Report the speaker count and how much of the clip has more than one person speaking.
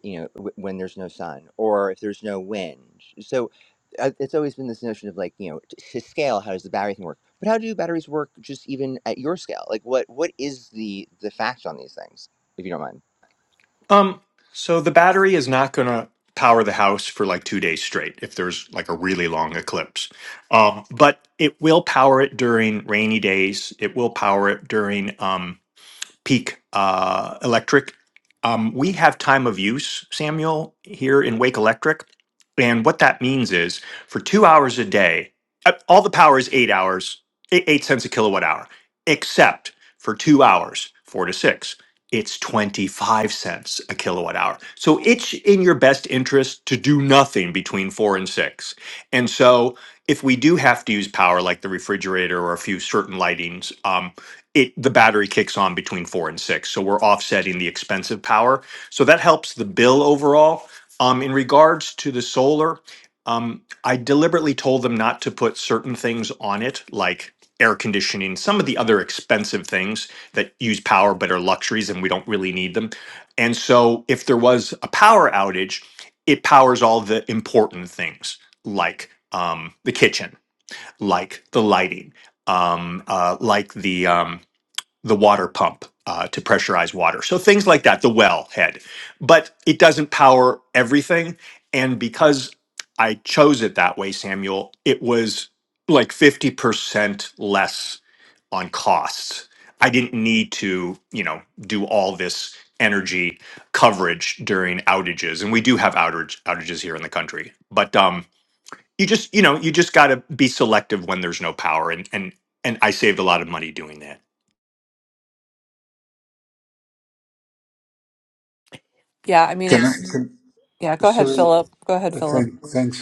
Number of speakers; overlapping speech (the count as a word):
four, about 1%